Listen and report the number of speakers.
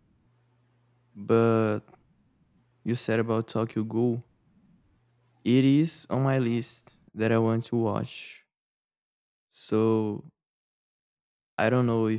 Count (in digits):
1